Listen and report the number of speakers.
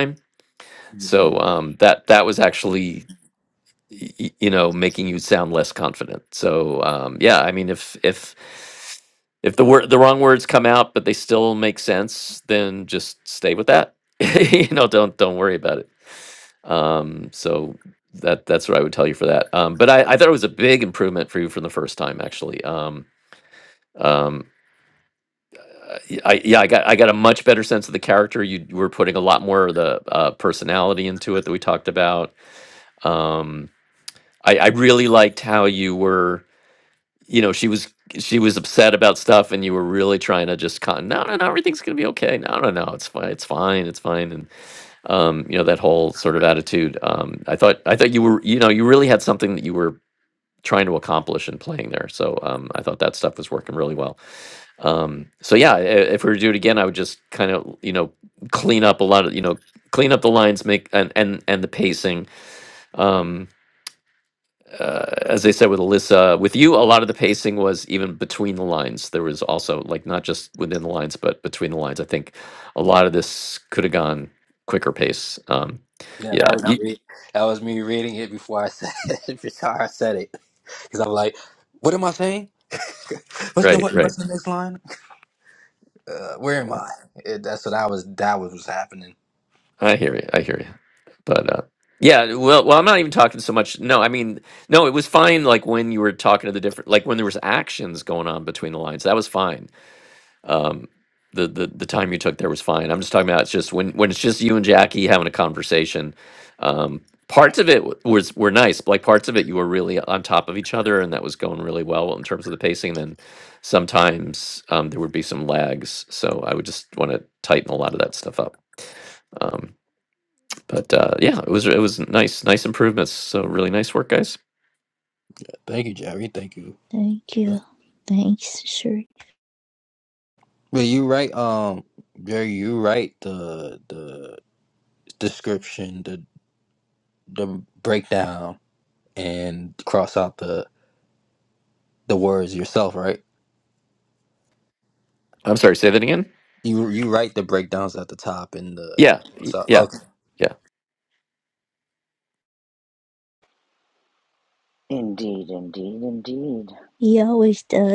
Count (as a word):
four